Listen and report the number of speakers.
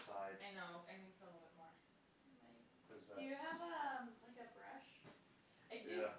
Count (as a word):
three